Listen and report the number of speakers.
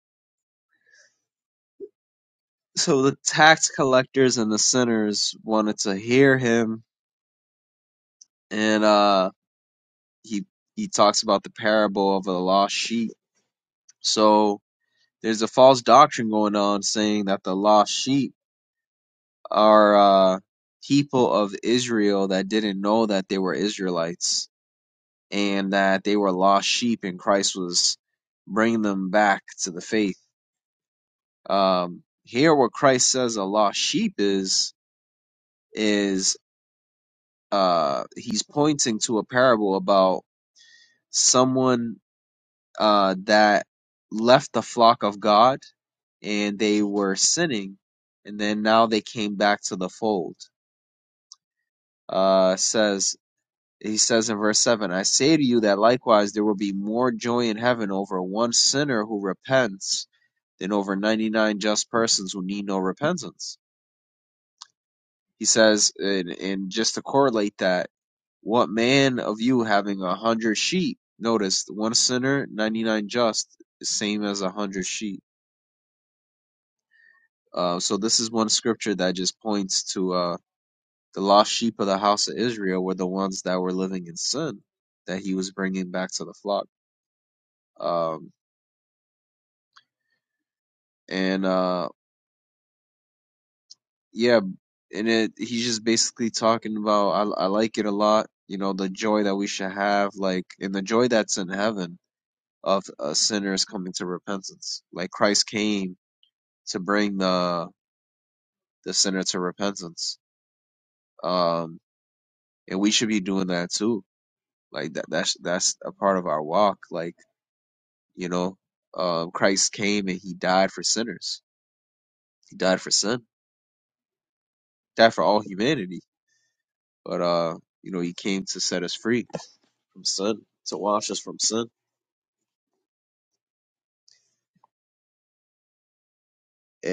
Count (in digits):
1